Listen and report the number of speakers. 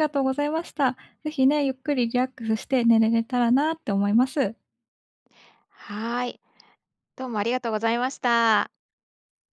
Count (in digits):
2